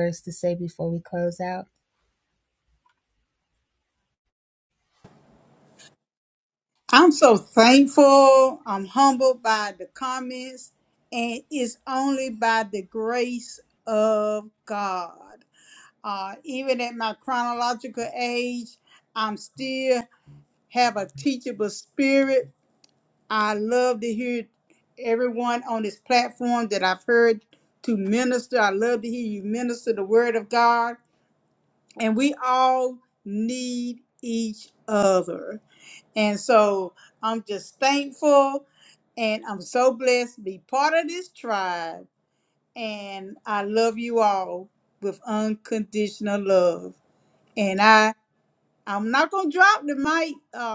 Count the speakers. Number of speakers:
two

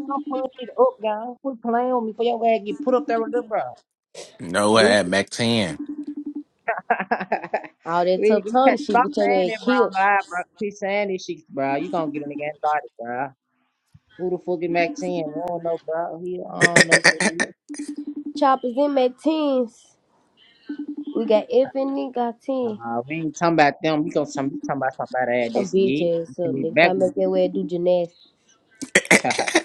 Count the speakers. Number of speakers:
three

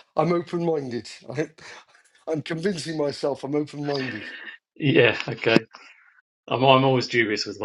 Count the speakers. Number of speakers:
two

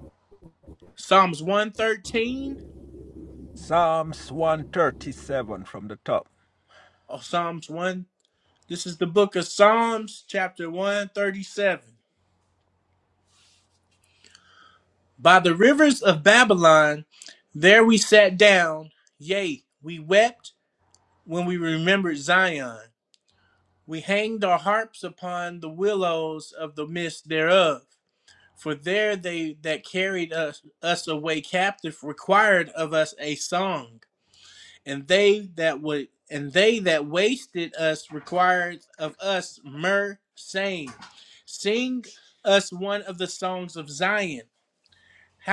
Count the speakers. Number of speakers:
two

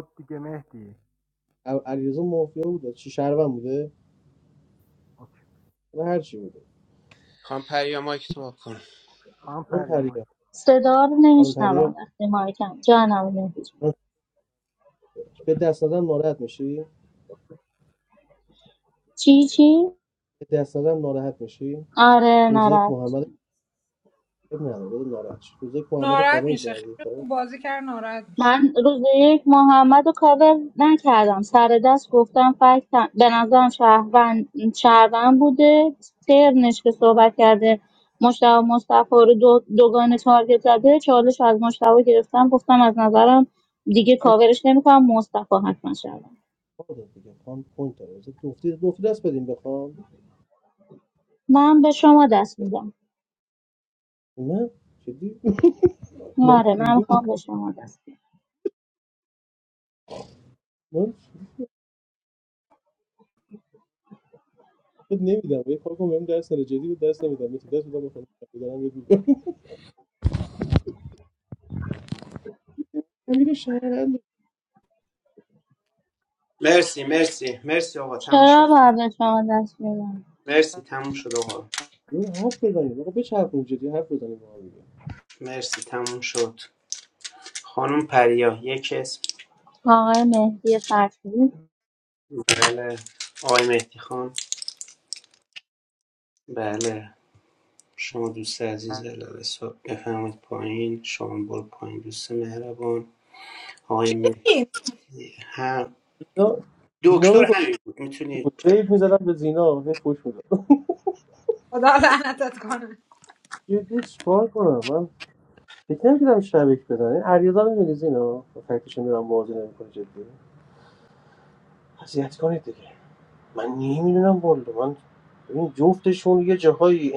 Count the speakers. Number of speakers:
five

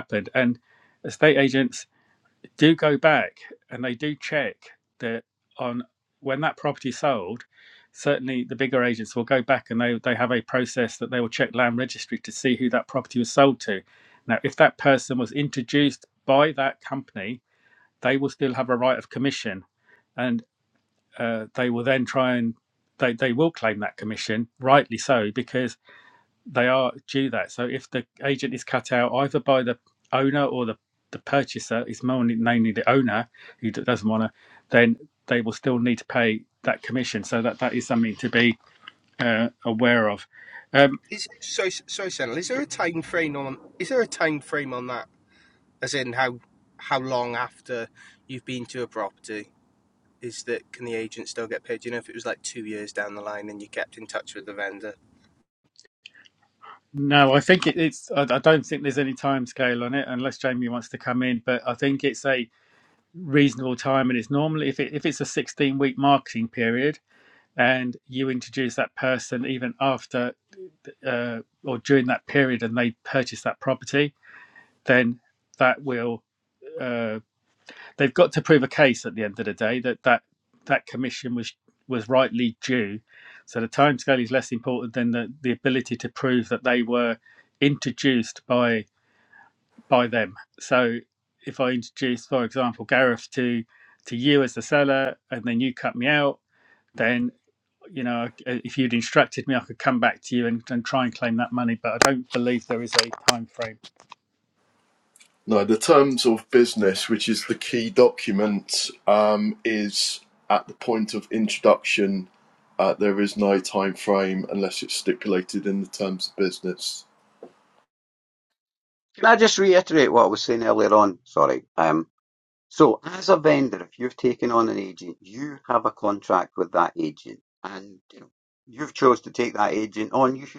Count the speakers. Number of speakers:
four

